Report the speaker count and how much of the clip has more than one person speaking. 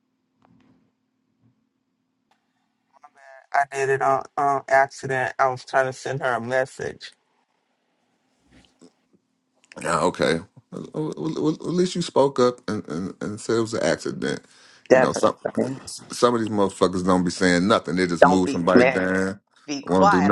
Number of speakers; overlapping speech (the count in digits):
3, about 9%